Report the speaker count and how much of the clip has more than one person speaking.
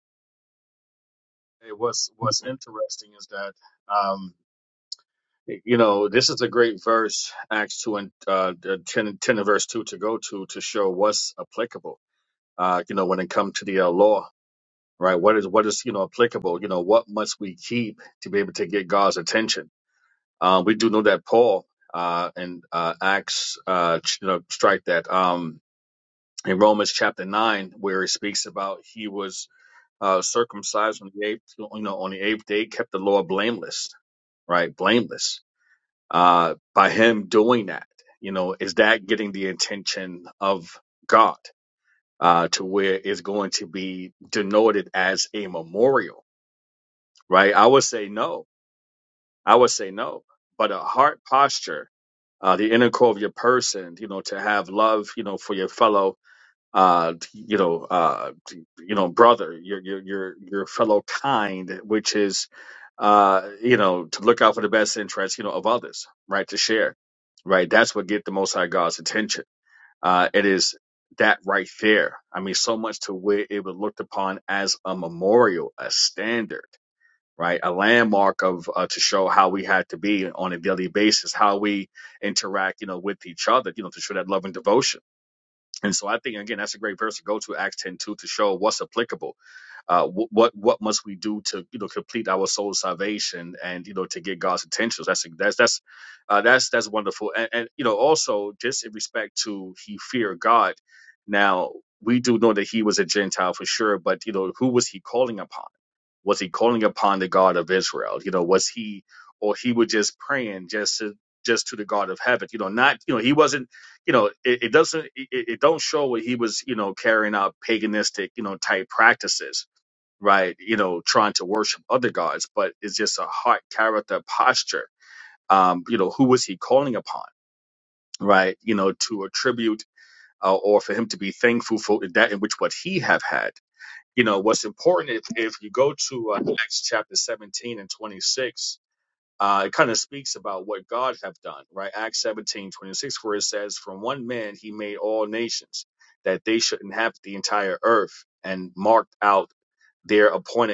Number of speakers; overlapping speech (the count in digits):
1, no overlap